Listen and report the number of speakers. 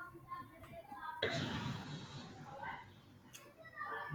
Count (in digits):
0